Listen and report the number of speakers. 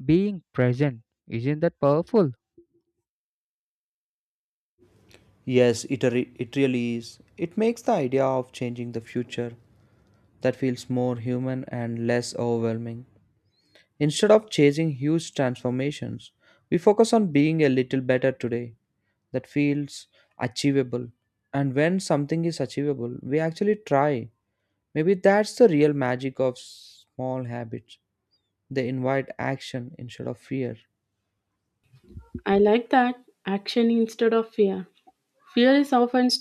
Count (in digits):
3